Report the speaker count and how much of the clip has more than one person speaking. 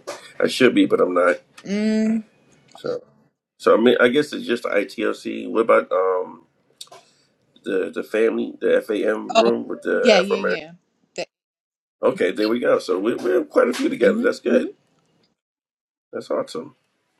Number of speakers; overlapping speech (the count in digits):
2, about 8%